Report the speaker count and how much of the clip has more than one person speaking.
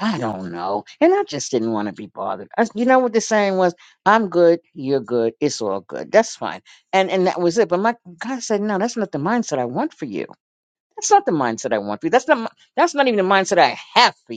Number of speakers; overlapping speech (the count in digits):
1, no overlap